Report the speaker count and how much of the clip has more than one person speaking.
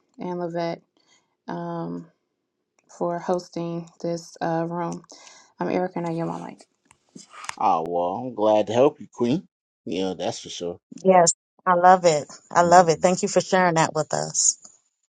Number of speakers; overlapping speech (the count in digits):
3, no overlap